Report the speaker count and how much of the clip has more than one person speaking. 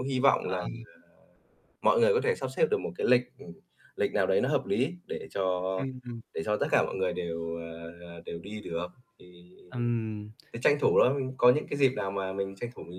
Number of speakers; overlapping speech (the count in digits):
2, about 2%